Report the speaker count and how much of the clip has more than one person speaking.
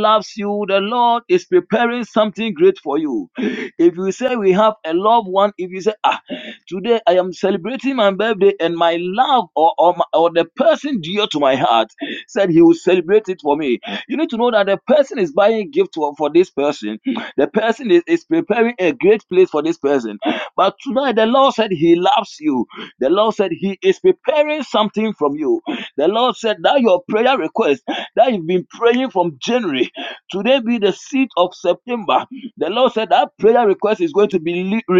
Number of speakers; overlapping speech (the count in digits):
1, no overlap